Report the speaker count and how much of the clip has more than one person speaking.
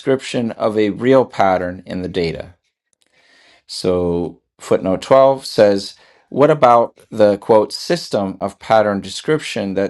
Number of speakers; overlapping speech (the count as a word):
one, no overlap